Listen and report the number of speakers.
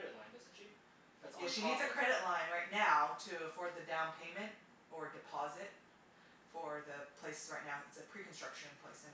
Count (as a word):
two